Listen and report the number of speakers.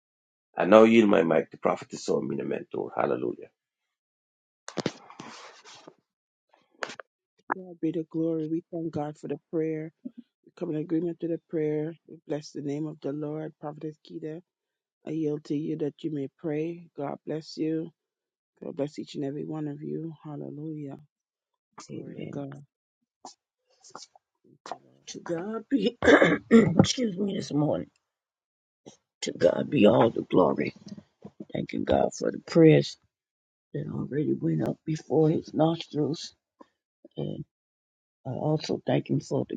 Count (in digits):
3